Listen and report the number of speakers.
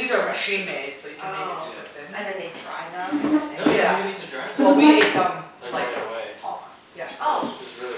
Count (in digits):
3